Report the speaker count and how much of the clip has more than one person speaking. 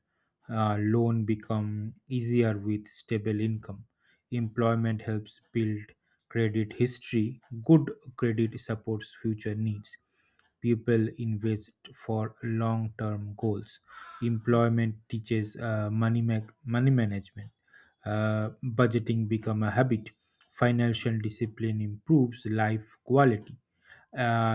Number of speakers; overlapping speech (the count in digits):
1, no overlap